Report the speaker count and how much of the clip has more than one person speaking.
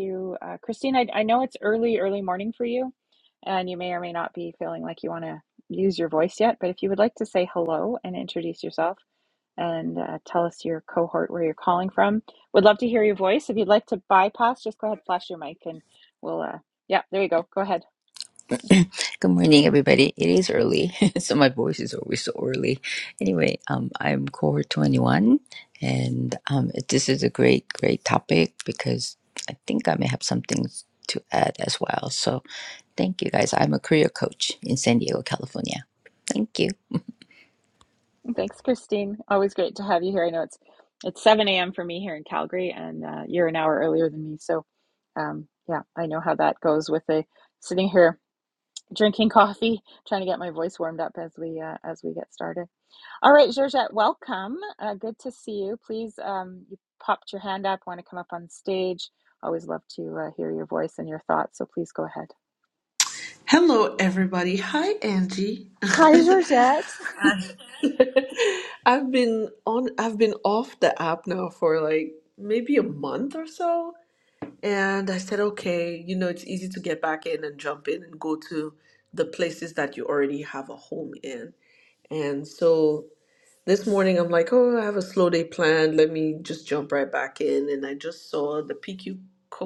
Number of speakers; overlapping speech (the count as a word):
three, about 1%